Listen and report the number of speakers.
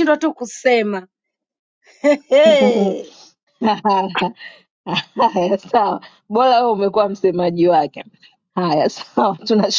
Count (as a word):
two